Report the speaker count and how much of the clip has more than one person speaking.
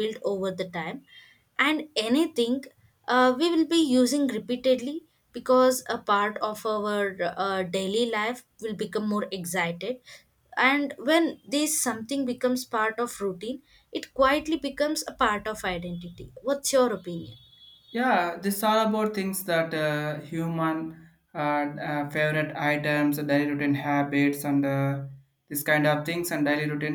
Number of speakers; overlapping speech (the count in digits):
2, no overlap